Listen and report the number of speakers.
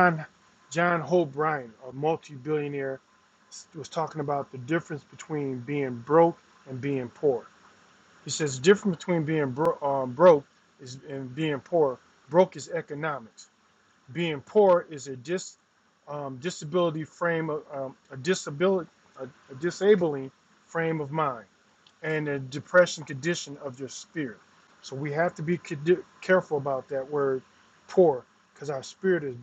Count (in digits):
1